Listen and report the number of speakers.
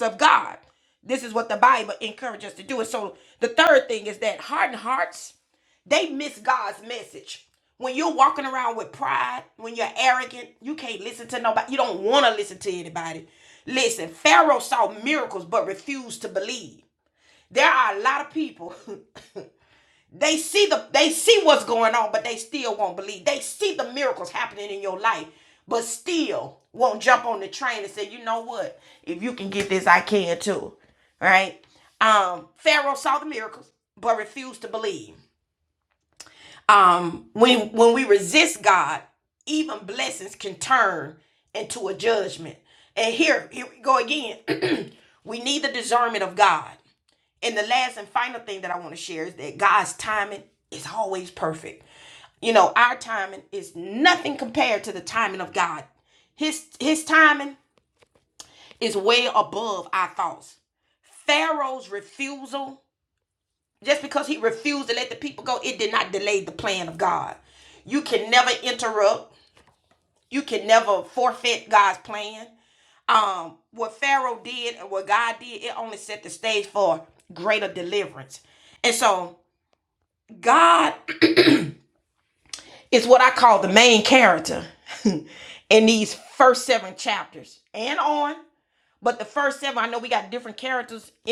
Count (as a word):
one